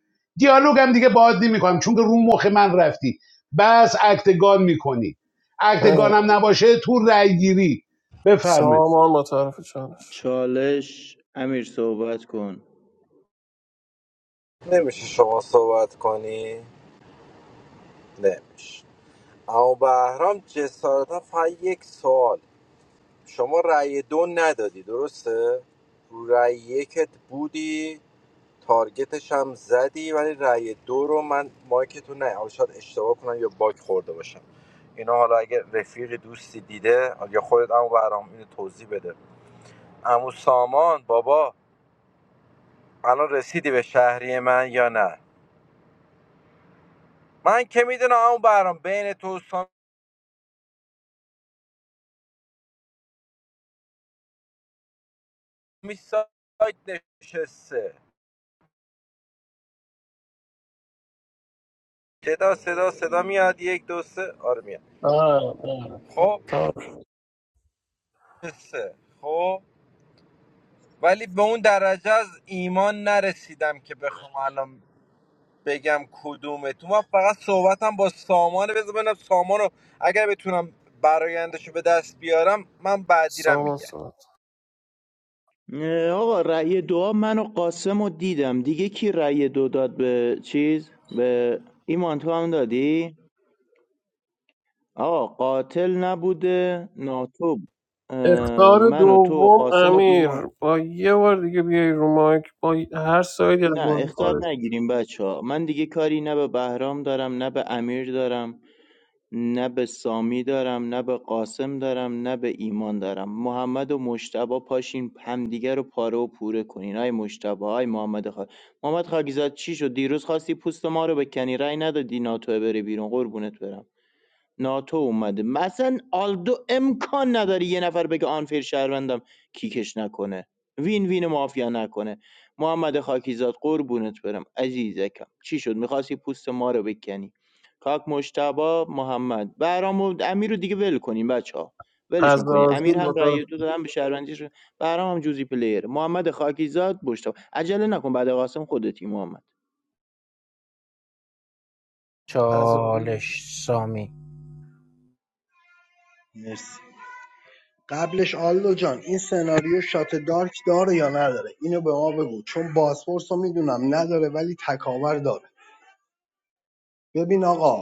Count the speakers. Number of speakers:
6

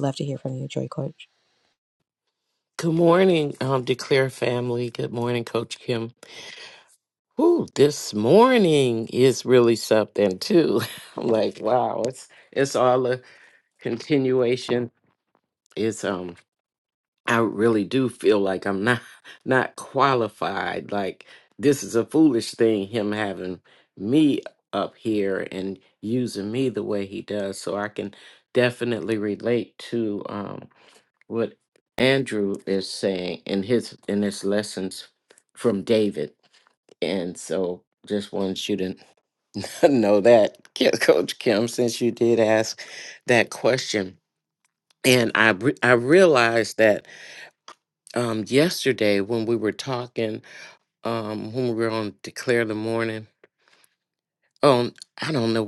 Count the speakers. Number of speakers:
2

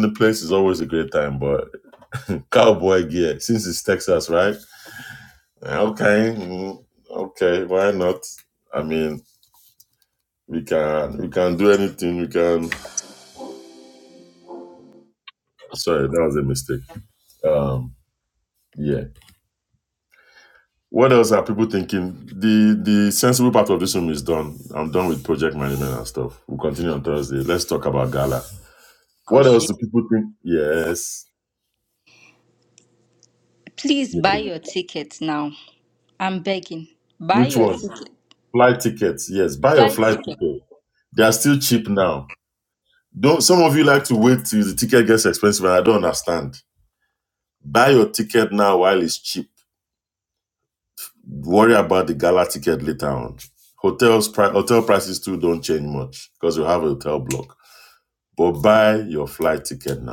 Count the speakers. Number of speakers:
2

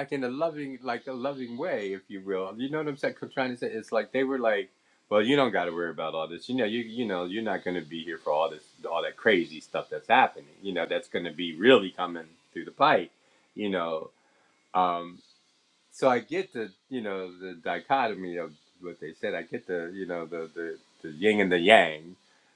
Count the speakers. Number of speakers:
1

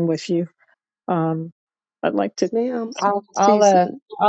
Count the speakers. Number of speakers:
2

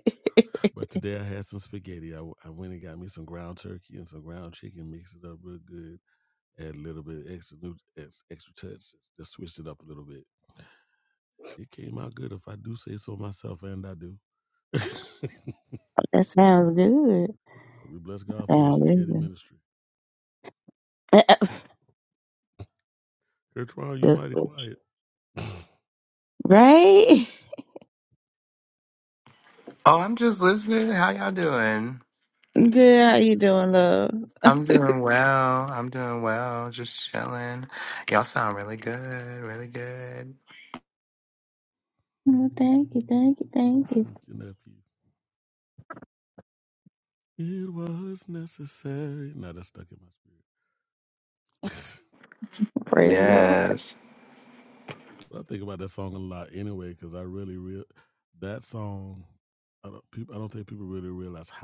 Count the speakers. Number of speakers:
3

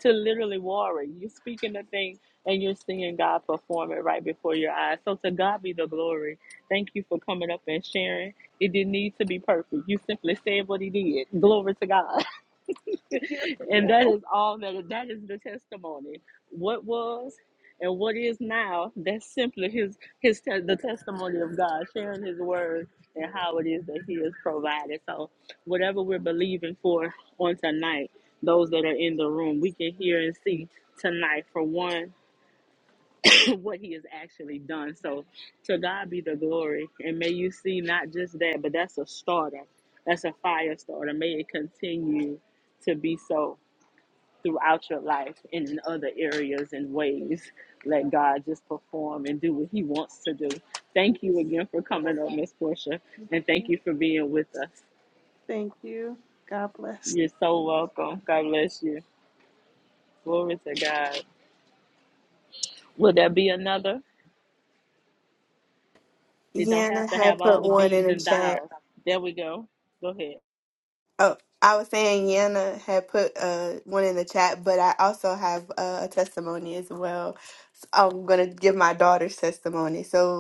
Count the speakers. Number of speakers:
3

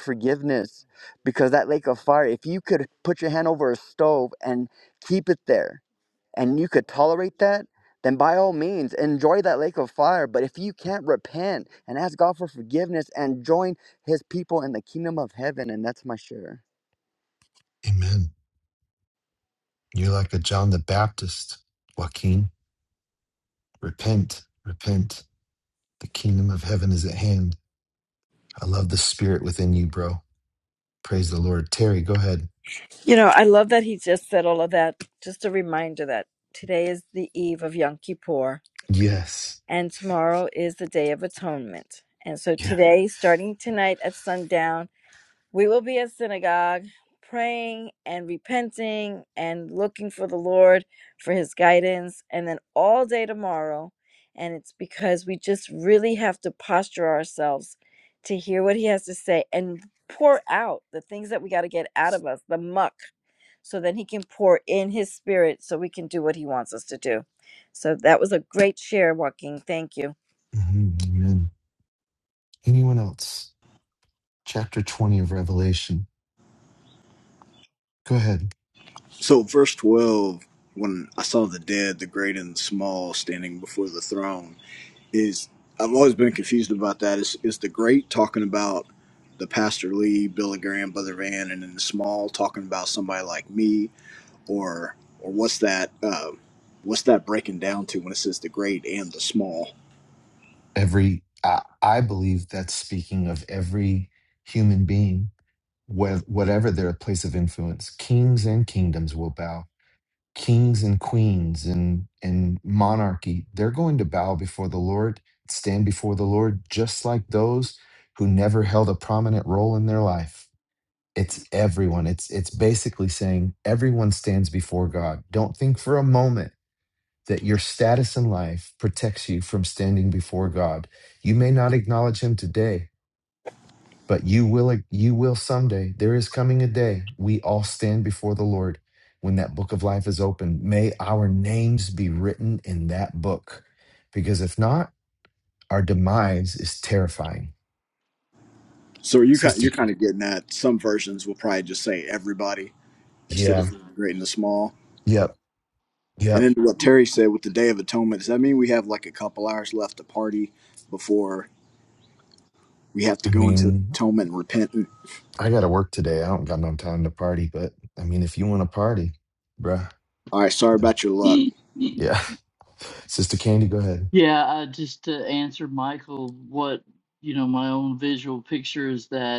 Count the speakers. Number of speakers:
5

